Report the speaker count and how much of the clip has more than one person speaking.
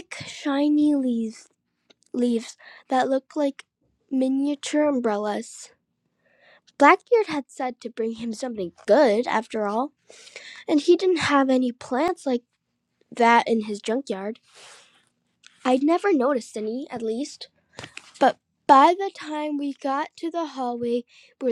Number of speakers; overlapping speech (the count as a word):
one, no overlap